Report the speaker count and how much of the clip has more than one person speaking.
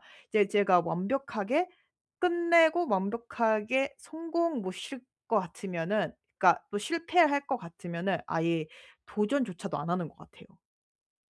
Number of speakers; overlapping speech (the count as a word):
one, no overlap